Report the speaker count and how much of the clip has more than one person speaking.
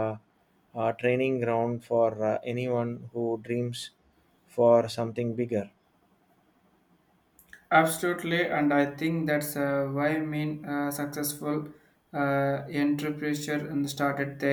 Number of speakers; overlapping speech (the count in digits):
2, no overlap